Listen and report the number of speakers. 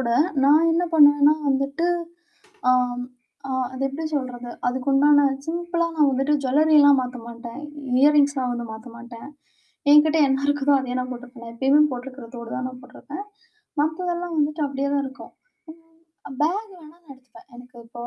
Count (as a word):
one